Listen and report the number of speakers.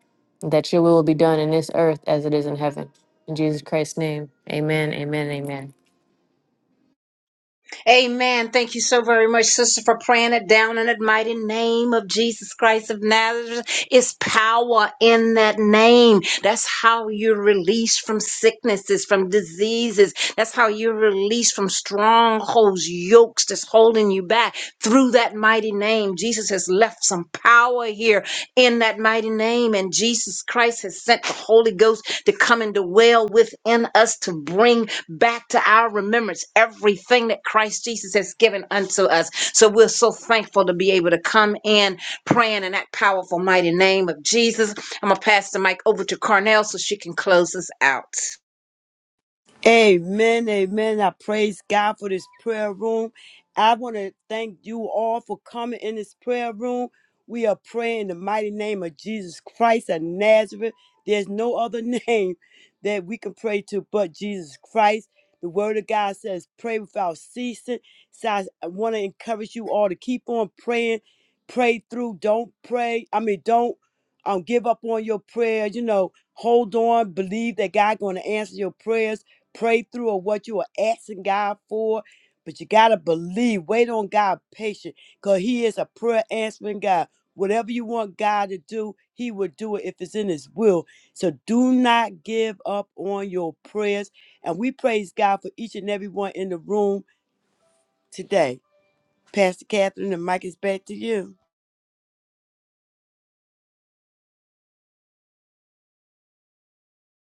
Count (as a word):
three